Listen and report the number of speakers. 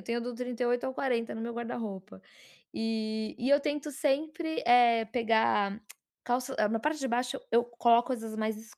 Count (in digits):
1